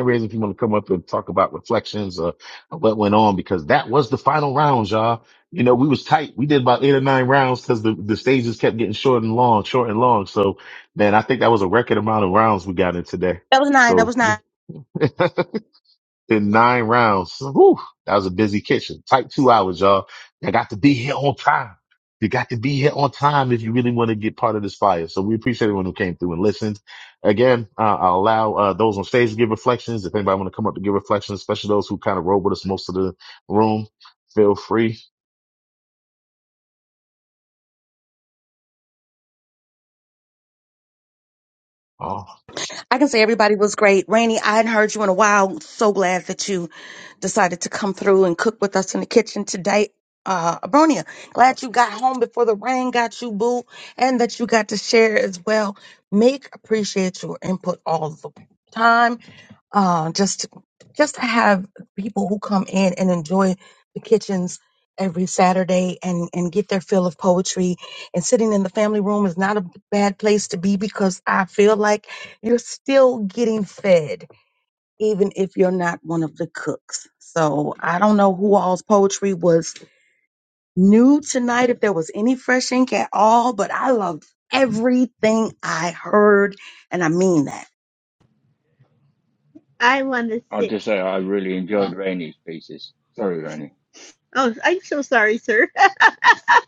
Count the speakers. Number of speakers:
four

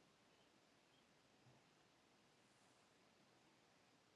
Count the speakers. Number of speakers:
zero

